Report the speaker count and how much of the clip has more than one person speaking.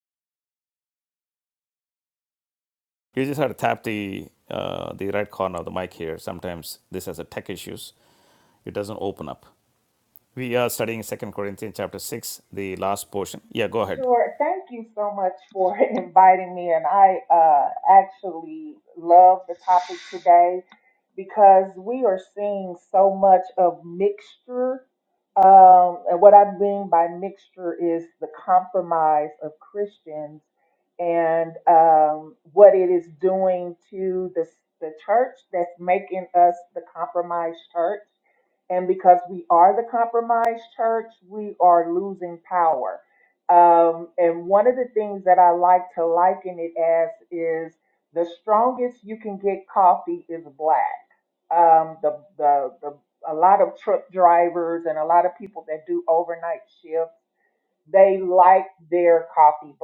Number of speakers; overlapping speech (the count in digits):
2, no overlap